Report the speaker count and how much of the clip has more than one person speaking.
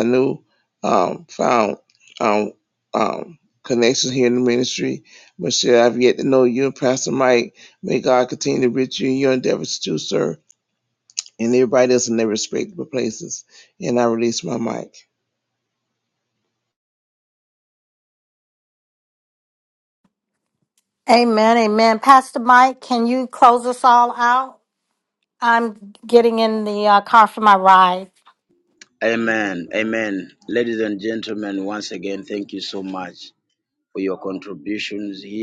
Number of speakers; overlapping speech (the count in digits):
3, no overlap